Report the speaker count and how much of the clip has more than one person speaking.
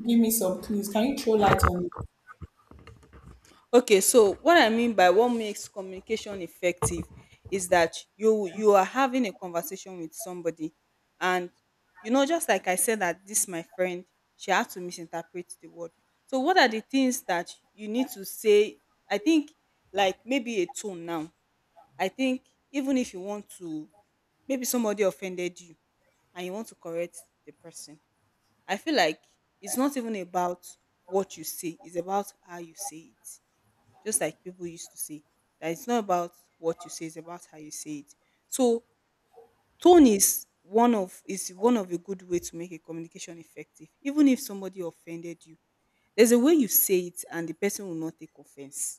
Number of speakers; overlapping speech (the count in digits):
2, no overlap